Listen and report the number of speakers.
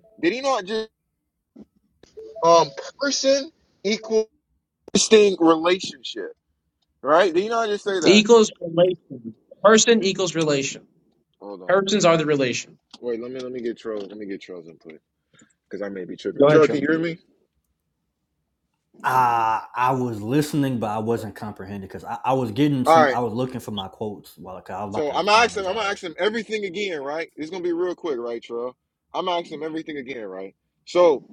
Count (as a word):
three